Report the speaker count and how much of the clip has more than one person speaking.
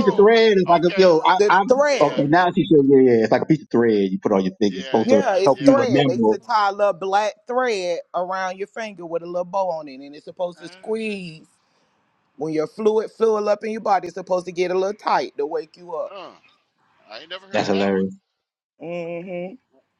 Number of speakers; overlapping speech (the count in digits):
3, about 24%